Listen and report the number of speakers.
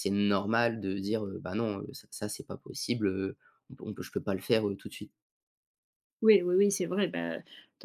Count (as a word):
two